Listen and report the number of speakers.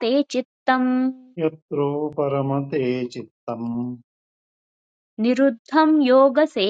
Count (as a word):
two